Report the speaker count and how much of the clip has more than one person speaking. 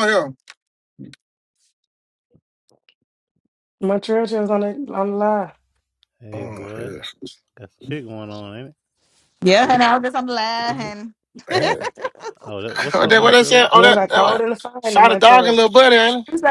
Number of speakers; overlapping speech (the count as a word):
four, about 17%